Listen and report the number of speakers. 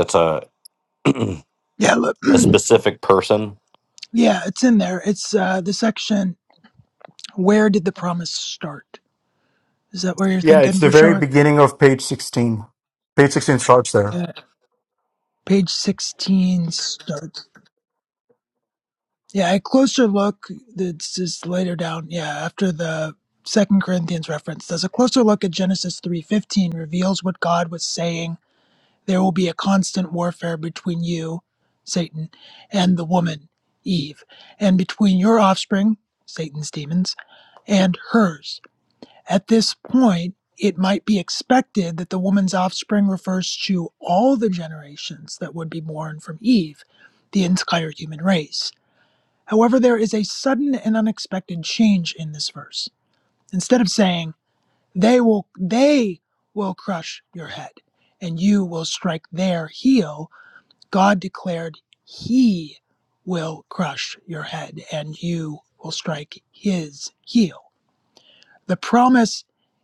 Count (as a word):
three